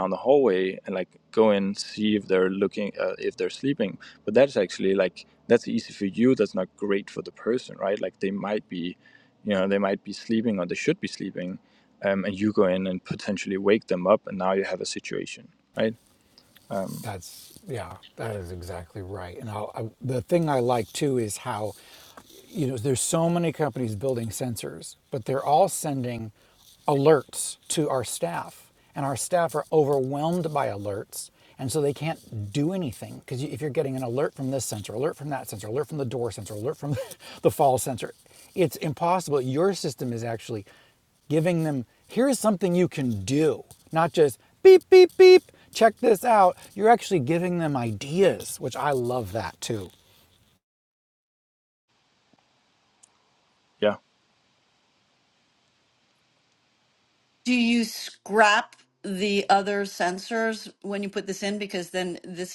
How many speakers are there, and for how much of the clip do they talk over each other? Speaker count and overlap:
three, no overlap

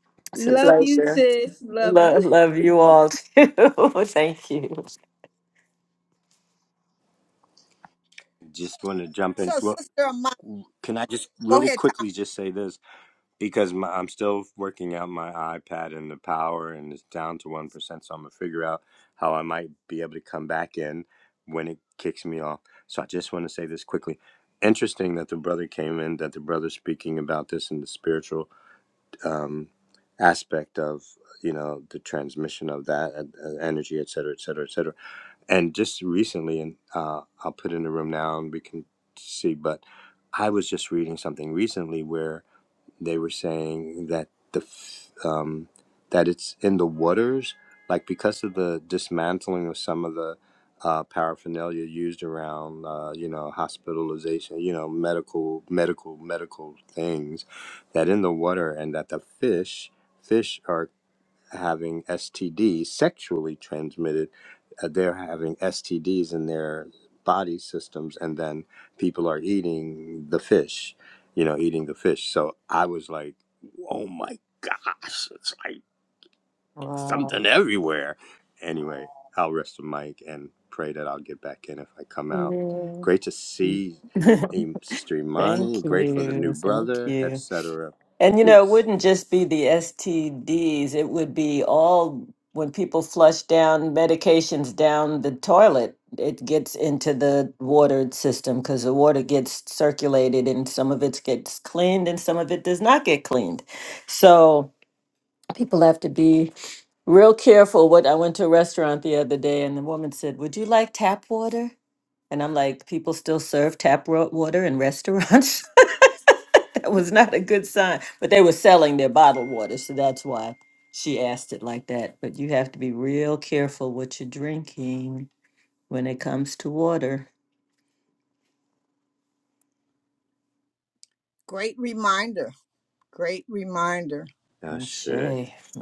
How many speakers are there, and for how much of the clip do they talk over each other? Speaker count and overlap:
four, about 4%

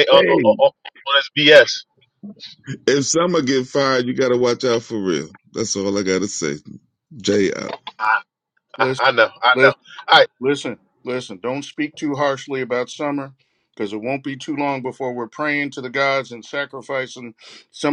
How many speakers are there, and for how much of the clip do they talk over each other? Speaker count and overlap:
three, about 4%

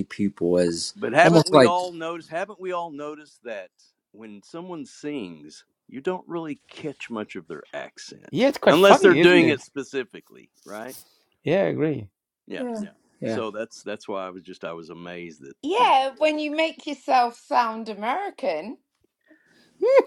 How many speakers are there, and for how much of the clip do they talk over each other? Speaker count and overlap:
four, about 11%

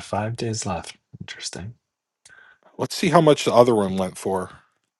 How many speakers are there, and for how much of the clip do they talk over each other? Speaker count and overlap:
two, no overlap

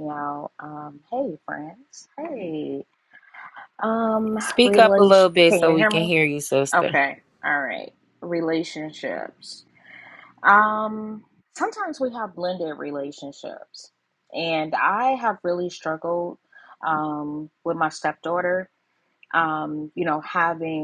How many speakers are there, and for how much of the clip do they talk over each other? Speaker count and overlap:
two, about 9%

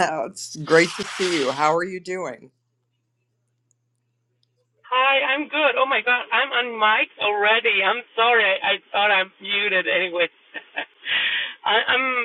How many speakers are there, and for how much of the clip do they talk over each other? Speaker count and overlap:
two, no overlap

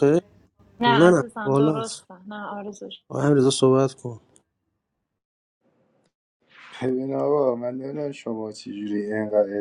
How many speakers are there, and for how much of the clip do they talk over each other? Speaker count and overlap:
three, about 10%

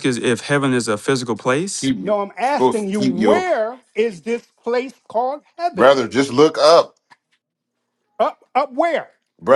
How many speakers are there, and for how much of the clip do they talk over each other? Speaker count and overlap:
three, about 12%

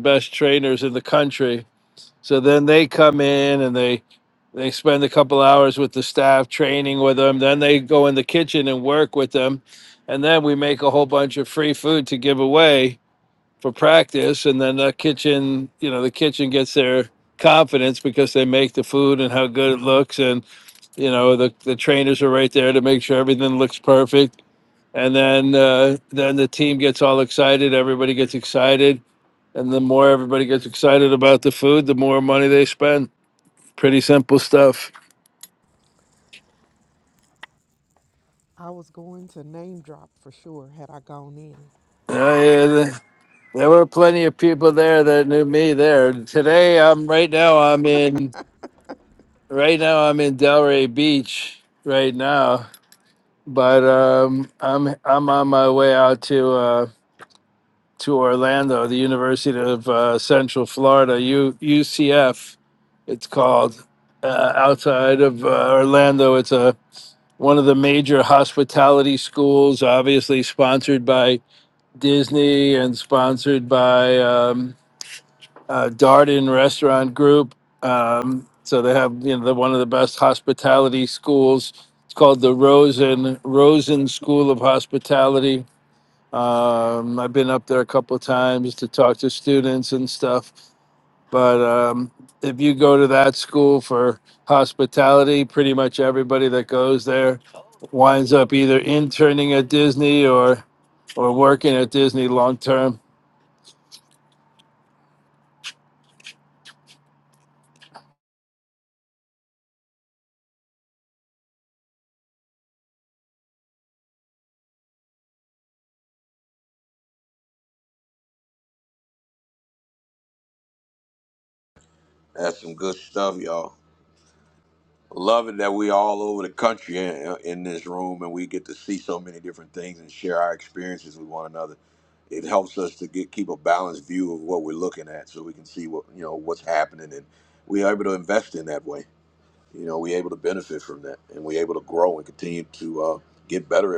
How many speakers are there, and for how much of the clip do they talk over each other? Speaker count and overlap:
three, no overlap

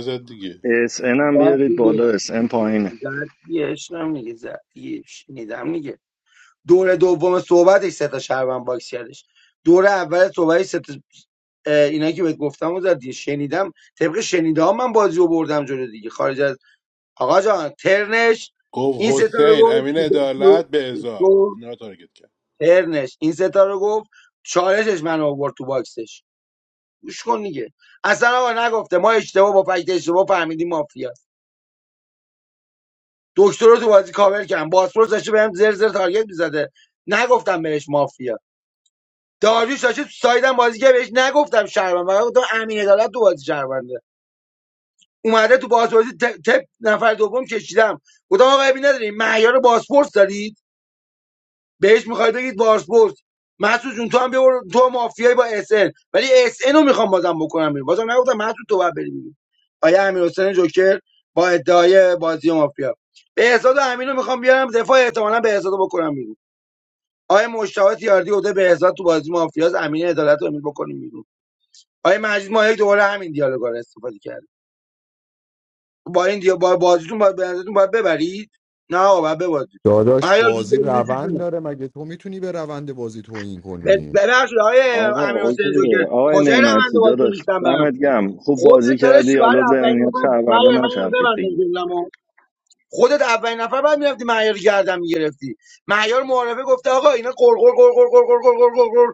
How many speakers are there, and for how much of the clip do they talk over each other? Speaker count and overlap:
four, about 10%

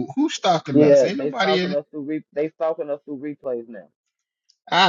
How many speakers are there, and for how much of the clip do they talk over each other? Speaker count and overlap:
two, about 20%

